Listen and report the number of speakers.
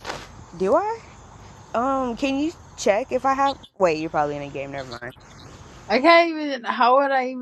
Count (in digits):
2